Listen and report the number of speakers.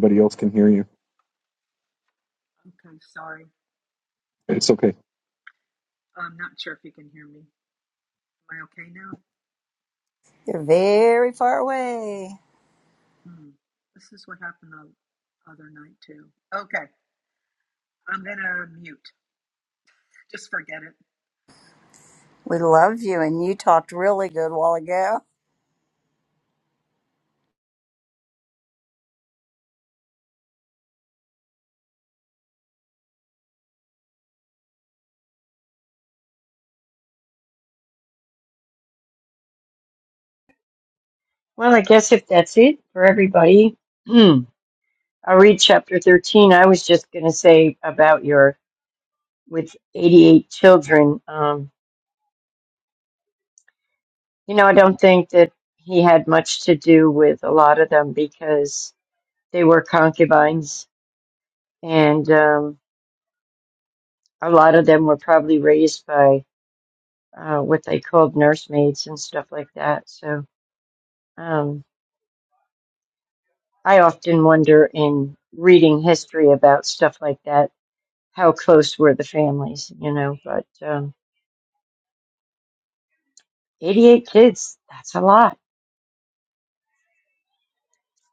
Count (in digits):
4